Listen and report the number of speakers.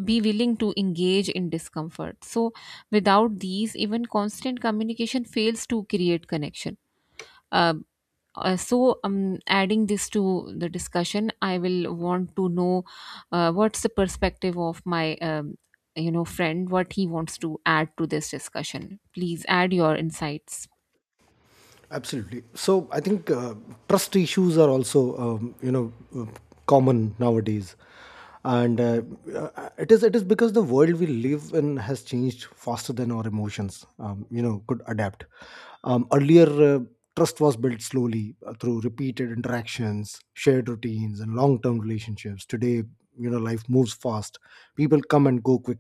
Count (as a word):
two